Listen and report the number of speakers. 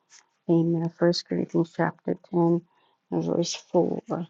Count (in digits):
1